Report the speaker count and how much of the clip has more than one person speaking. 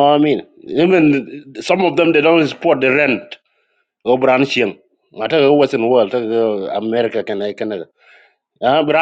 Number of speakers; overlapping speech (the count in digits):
1, no overlap